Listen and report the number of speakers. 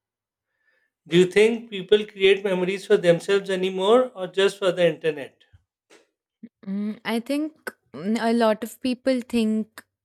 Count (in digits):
2